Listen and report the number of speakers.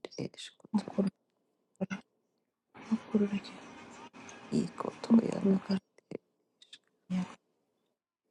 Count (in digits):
2